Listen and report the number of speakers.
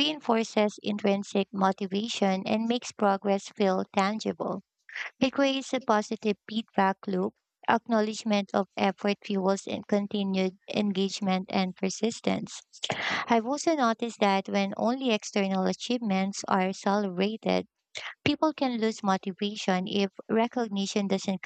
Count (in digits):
1